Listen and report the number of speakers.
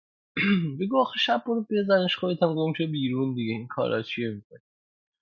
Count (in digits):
1